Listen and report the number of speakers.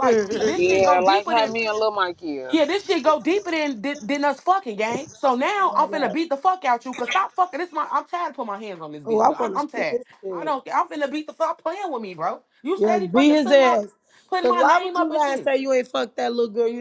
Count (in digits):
3